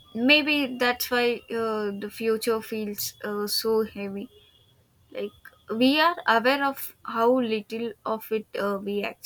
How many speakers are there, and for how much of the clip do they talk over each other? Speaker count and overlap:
1, no overlap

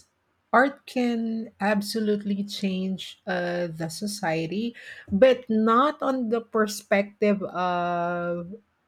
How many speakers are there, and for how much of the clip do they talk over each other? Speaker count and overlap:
1, no overlap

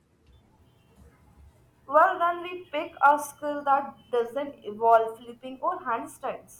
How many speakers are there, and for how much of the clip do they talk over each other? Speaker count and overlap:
1, no overlap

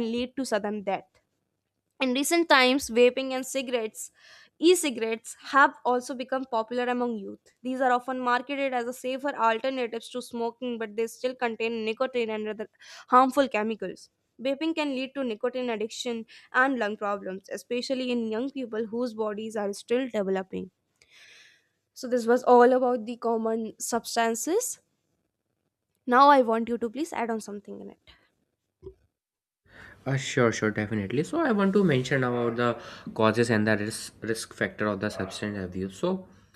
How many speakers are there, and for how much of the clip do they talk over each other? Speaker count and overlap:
2, no overlap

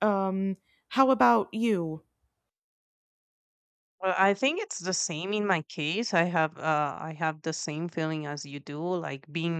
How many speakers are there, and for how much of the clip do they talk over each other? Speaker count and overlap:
2, no overlap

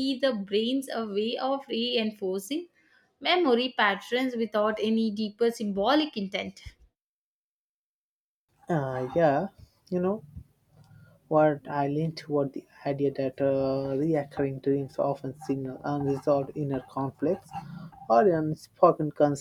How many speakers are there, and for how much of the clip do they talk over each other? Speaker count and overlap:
2, no overlap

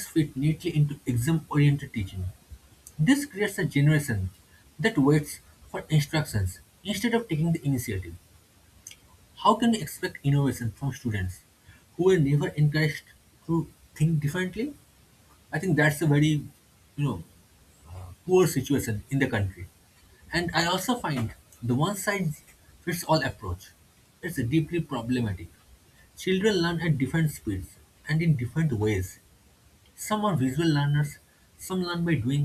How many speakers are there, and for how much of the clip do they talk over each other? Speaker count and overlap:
1, no overlap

